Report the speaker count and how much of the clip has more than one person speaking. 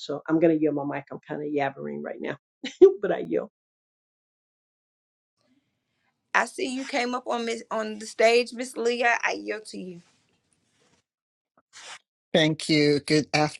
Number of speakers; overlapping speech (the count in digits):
3, no overlap